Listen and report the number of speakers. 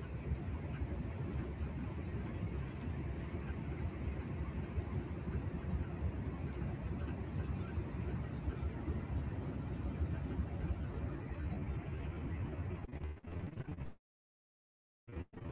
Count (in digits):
0